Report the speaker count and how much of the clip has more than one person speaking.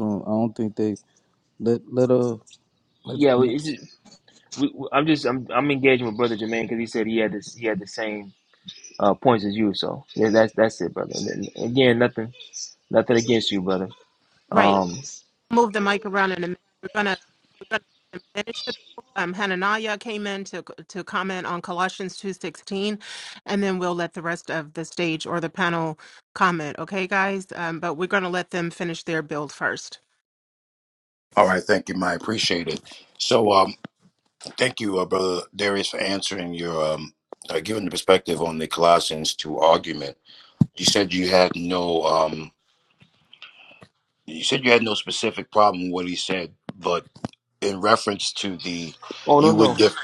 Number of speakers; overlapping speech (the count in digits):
4, about 2%